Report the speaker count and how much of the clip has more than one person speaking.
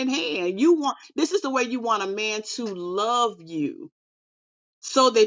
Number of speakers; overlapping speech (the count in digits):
1, no overlap